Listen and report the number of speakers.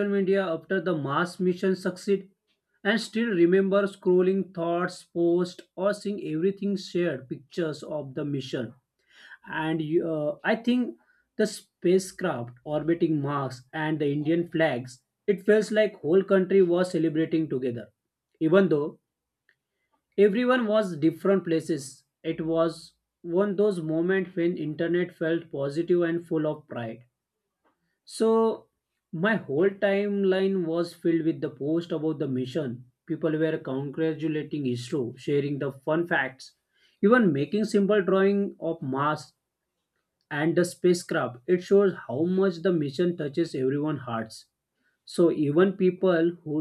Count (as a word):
one